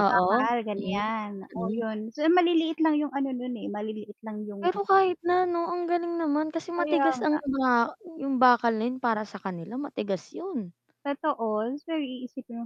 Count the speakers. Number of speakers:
2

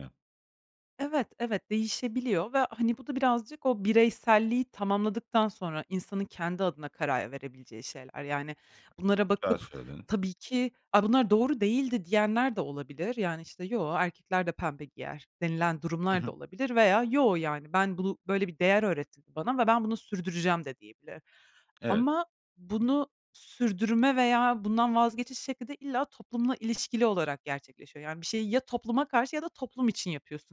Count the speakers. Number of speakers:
2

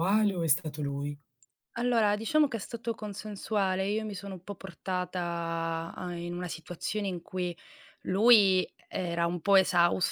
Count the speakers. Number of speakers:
2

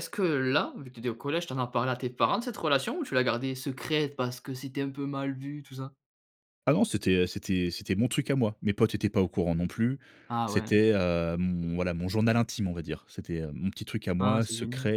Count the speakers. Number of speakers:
2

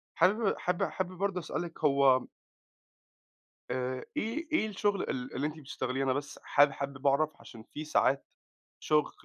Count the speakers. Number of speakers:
1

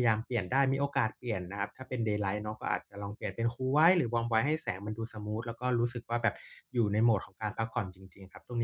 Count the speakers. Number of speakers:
1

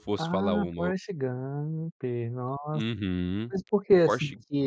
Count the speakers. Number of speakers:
2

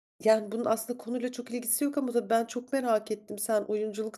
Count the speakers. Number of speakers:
1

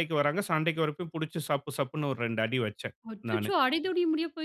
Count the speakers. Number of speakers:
2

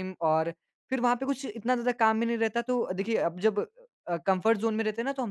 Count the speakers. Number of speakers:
1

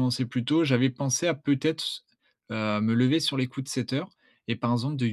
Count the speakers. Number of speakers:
1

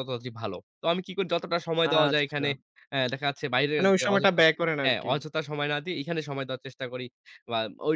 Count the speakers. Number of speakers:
2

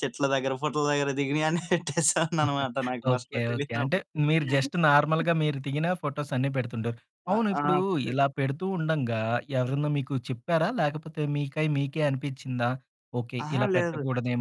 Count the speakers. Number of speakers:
2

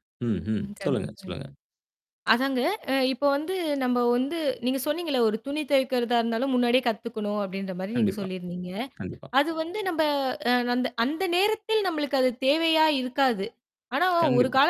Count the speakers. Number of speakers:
2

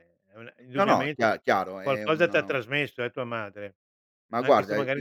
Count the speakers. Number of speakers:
2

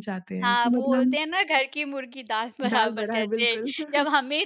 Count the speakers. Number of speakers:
2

